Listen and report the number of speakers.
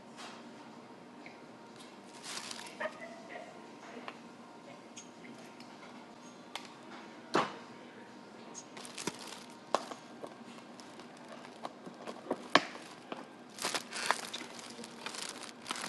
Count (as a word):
zero